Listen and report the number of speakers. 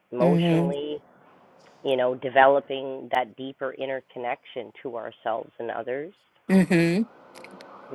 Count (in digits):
2